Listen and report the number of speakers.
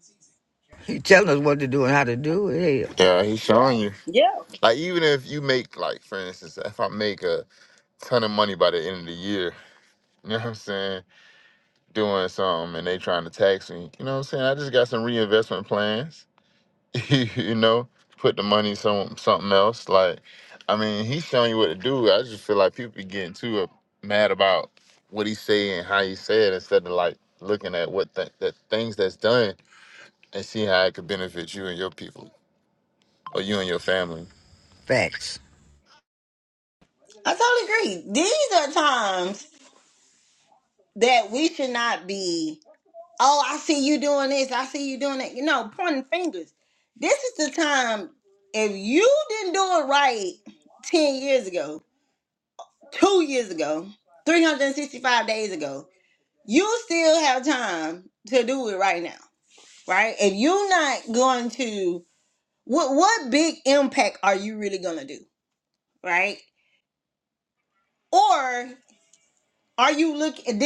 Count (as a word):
three